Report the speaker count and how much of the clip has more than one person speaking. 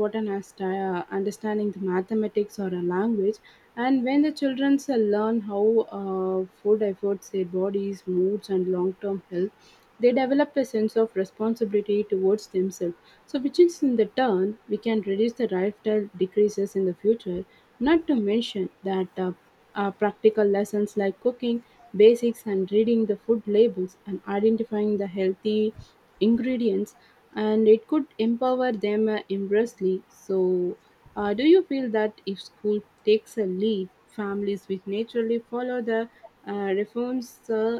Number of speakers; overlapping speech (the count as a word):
one, no overlap